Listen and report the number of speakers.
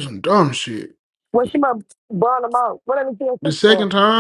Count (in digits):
2